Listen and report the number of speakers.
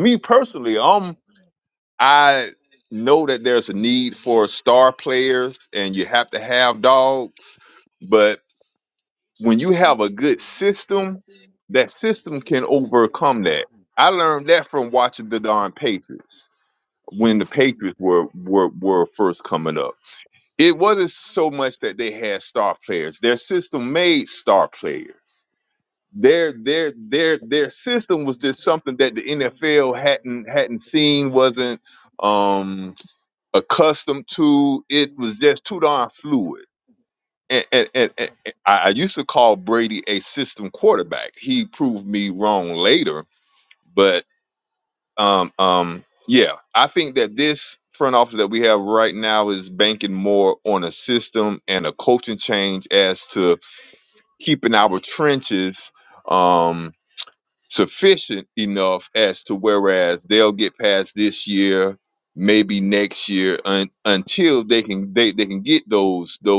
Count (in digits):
1